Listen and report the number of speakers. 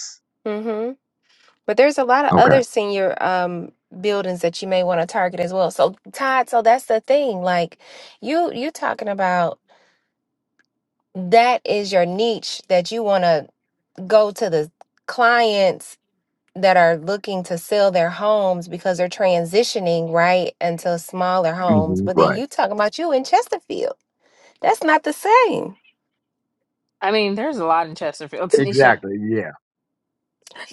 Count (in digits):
3